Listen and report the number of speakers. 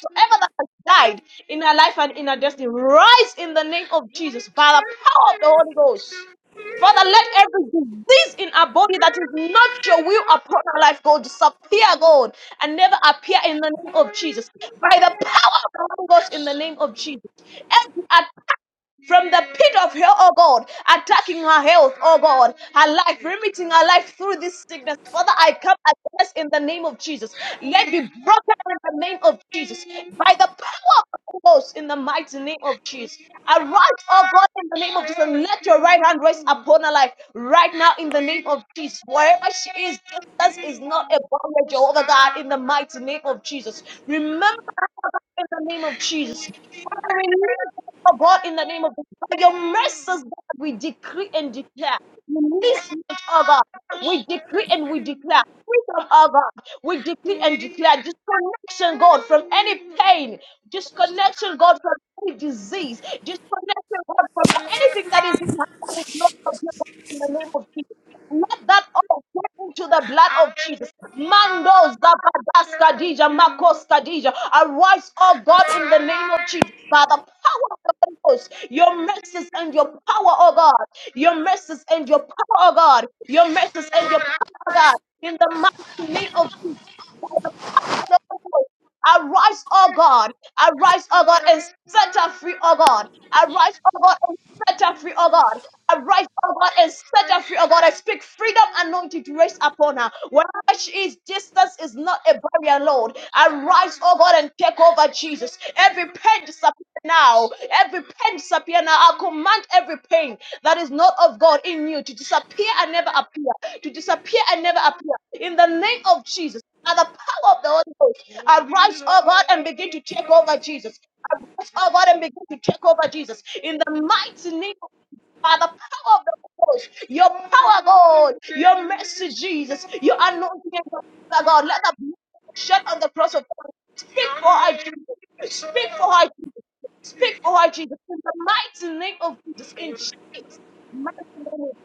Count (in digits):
1